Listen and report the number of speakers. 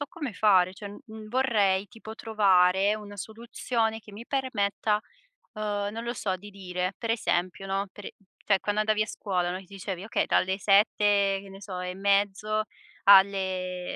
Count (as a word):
one